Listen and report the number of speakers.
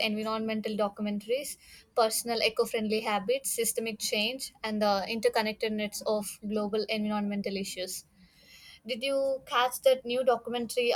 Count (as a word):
one